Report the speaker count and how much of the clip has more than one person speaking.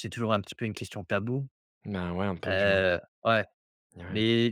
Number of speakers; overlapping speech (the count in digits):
2, about 11%